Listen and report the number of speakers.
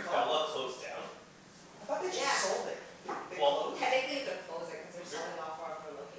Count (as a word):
three